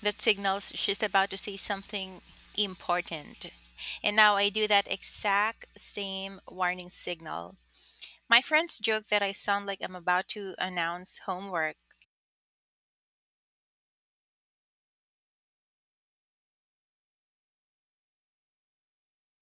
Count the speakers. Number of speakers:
1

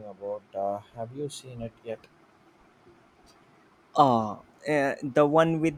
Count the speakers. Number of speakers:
2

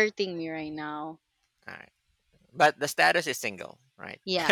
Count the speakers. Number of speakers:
2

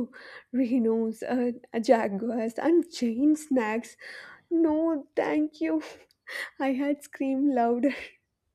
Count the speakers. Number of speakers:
1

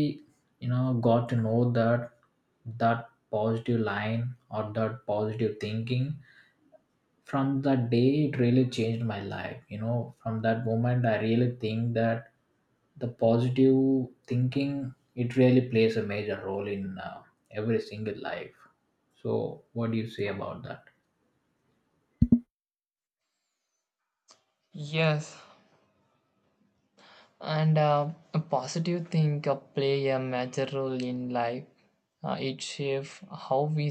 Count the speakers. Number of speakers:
2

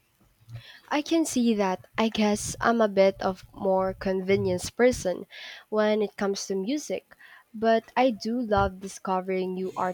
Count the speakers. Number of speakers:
1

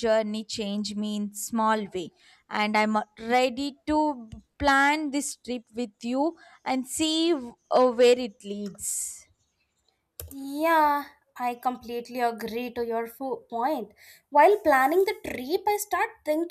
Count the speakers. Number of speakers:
2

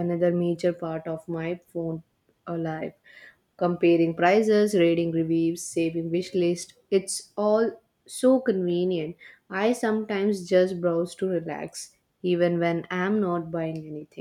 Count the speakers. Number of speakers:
1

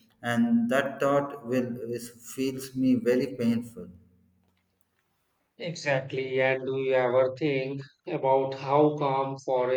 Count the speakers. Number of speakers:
2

